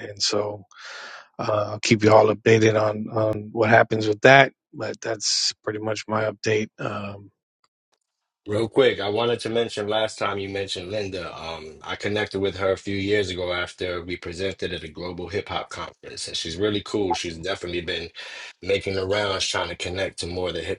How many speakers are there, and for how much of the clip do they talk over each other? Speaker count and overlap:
2, no overlap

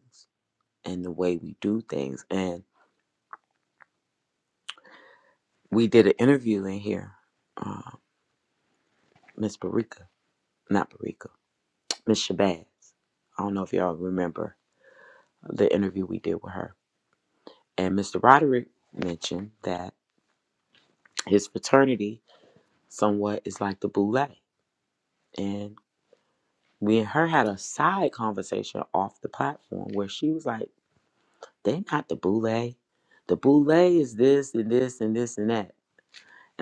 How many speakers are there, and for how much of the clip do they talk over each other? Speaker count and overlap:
1, no overlap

